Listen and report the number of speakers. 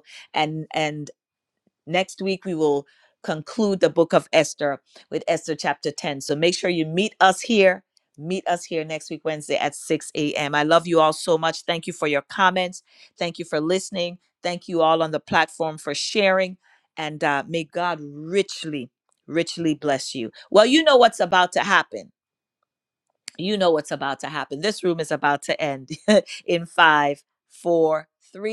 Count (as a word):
one